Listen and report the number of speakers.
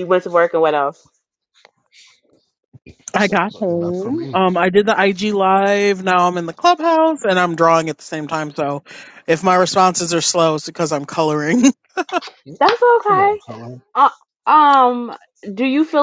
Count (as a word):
three